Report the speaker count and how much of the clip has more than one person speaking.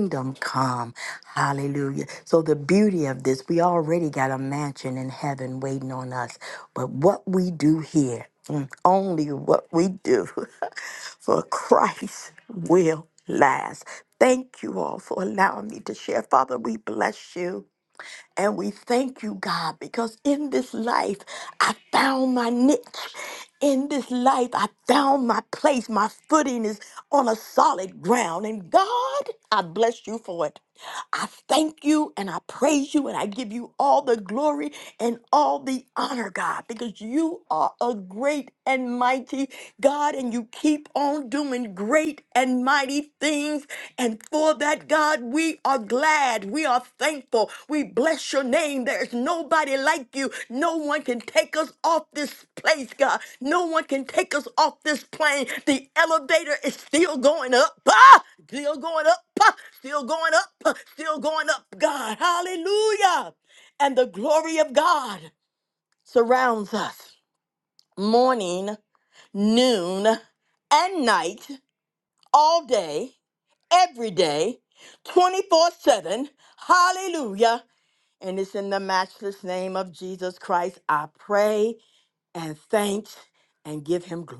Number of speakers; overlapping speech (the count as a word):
one, no overlap